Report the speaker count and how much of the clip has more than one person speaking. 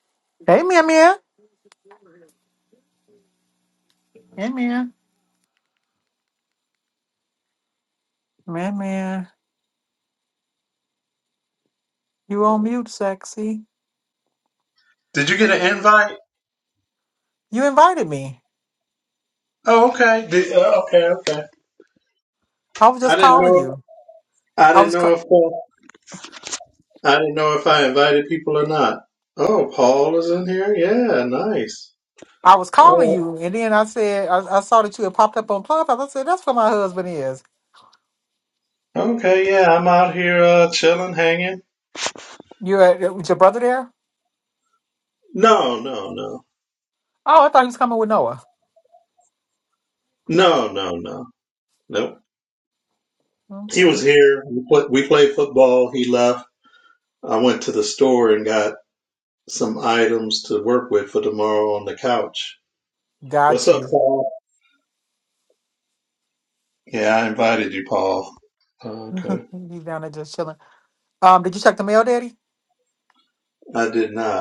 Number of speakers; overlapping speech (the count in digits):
2, about 3%